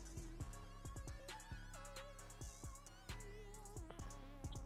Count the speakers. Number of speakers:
zero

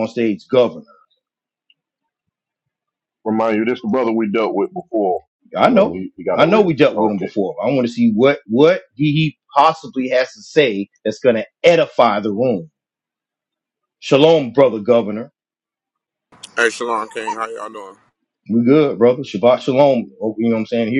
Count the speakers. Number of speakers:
three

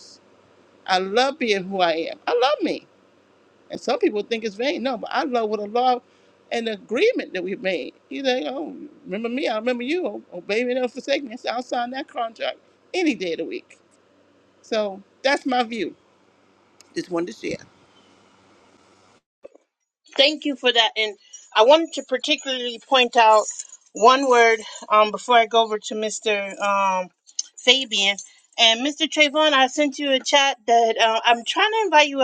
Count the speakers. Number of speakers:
two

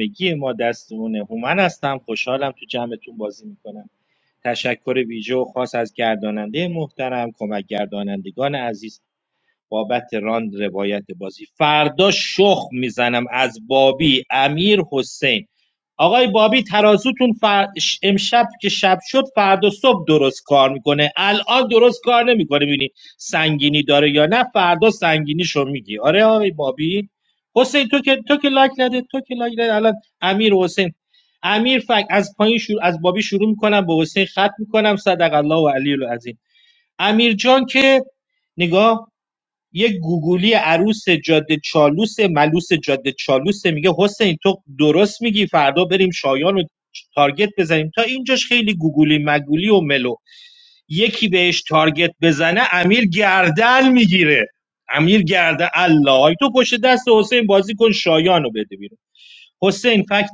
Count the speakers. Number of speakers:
one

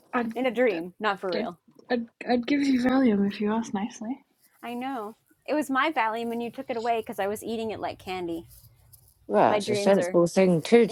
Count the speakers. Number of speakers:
three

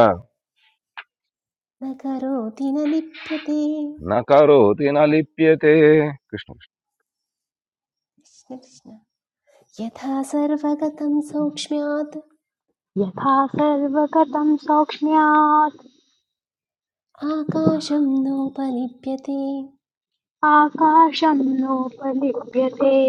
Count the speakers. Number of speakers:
three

